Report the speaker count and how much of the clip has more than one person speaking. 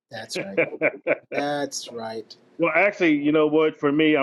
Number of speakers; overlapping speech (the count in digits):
2, under 1%